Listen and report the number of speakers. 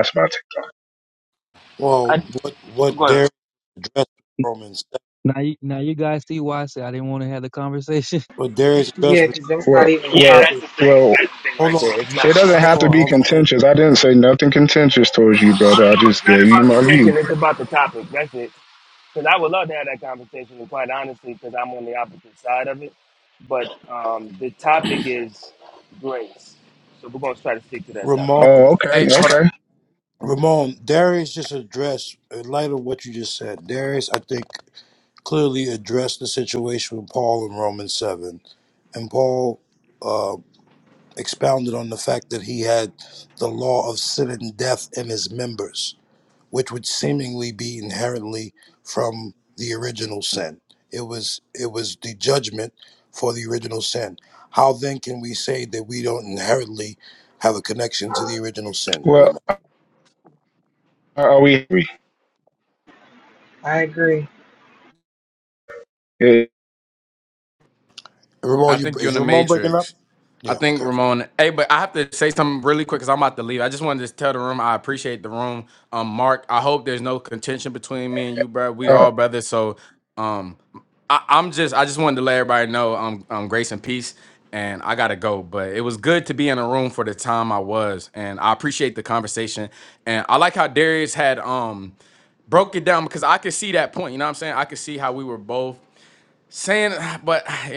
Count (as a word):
six